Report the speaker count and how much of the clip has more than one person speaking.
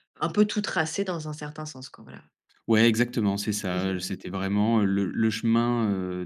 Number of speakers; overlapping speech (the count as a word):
two, about 4%